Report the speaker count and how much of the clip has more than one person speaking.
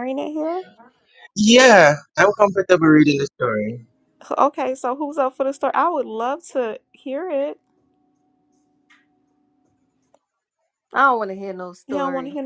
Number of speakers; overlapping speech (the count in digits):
3, about 3%